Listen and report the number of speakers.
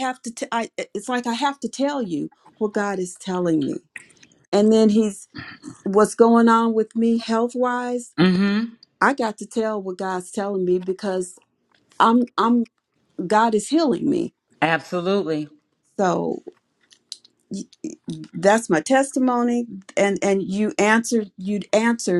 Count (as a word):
two